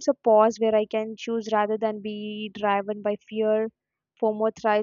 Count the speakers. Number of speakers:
1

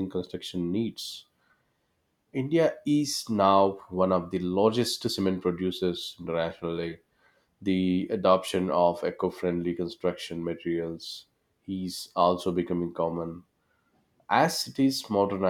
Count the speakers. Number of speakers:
1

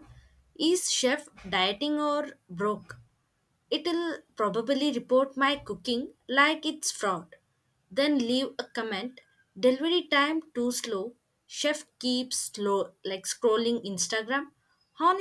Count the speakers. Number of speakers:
1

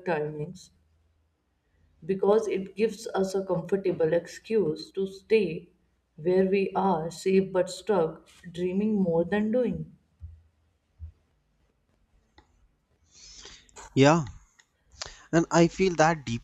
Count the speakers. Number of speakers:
2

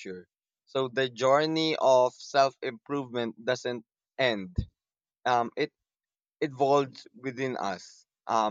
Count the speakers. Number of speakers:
1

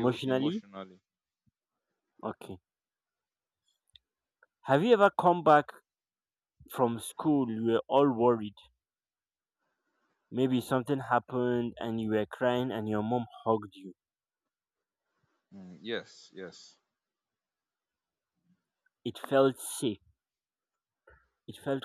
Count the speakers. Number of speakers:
2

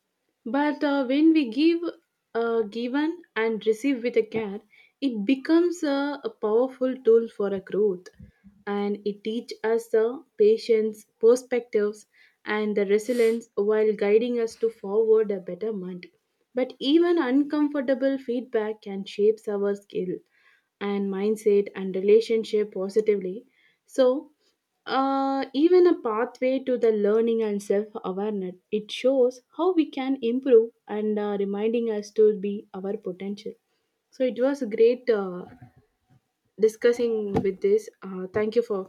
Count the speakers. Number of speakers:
1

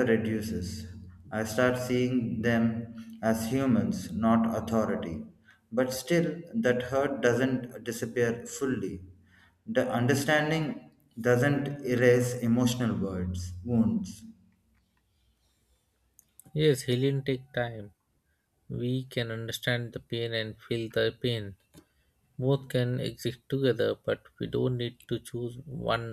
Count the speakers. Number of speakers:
2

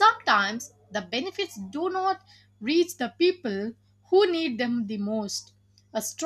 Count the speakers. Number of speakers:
1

